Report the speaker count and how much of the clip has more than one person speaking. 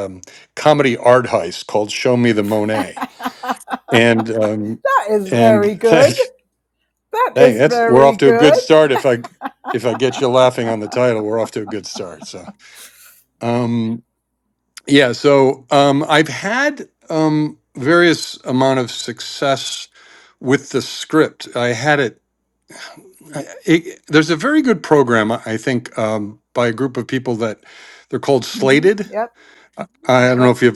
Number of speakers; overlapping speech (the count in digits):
2, about 9%